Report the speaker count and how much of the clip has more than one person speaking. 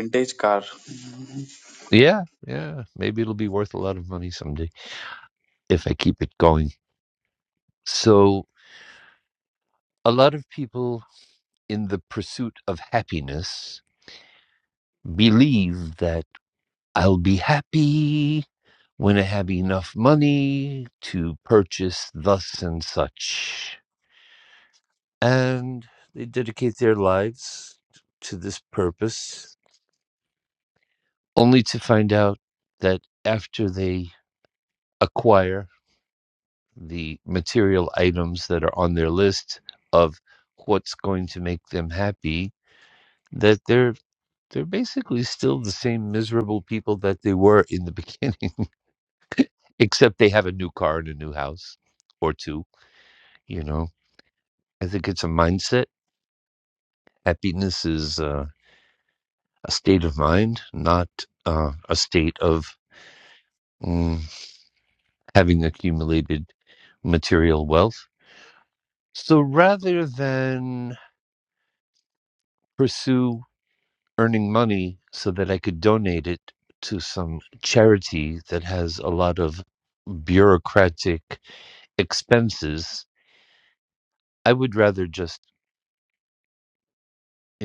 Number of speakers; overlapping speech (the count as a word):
two, no overlap